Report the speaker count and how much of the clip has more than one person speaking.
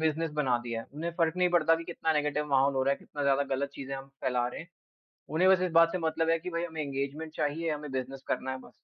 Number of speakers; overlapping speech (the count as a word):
one, no overlap